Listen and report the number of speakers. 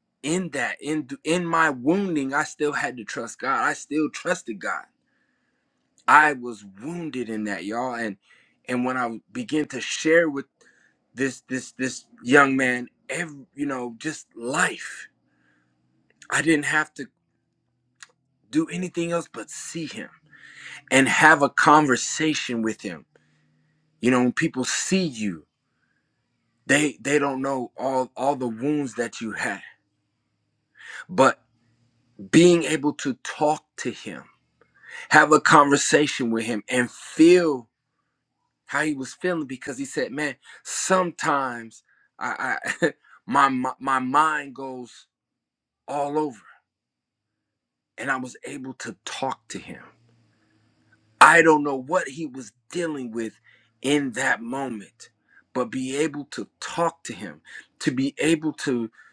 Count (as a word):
one